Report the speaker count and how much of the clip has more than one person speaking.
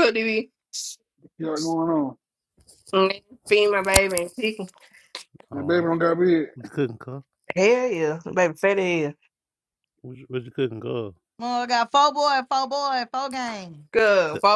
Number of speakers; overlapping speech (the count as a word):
four, about 2%